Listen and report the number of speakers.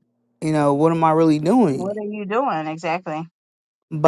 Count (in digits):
2